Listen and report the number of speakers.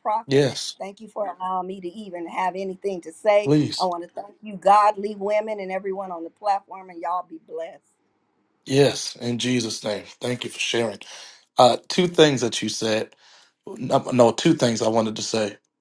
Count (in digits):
2